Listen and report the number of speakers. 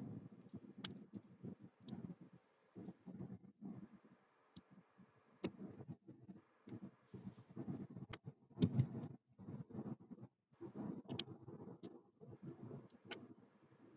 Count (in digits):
0